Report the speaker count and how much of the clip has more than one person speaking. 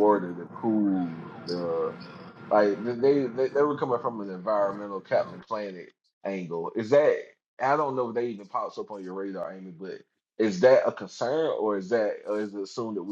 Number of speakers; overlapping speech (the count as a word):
one, no overlap